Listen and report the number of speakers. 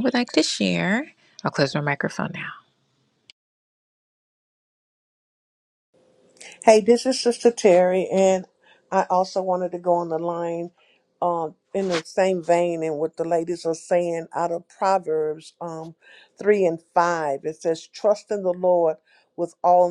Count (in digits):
2